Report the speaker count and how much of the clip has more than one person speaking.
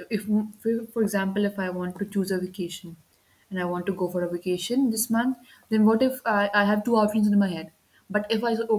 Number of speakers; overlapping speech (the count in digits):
1, no overlap